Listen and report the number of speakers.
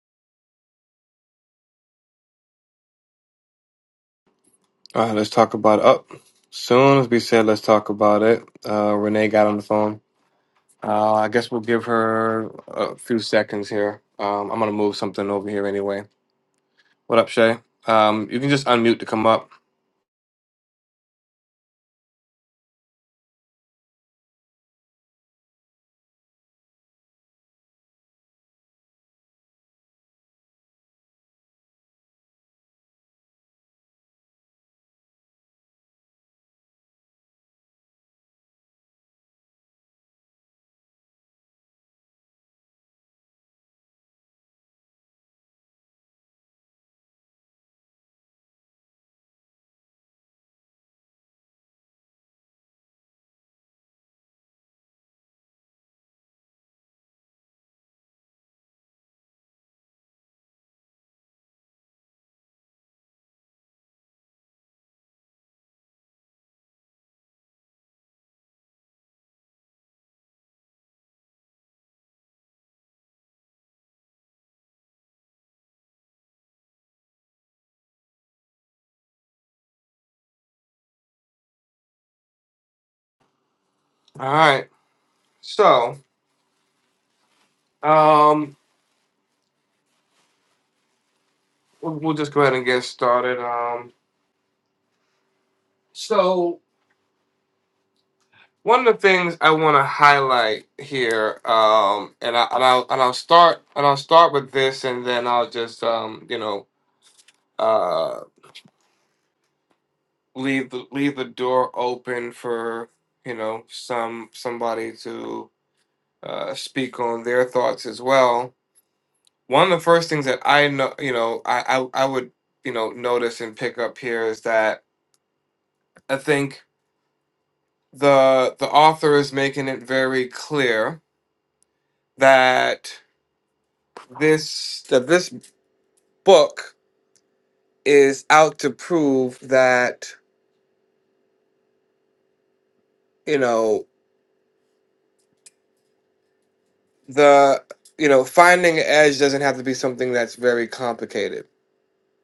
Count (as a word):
one